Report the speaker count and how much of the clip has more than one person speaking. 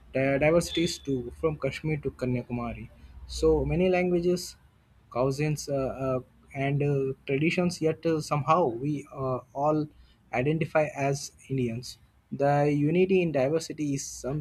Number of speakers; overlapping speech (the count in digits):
1, no overlap